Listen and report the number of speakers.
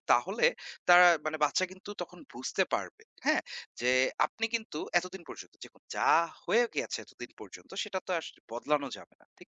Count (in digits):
1